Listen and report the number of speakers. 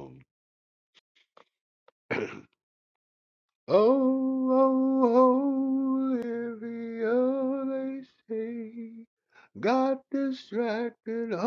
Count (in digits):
1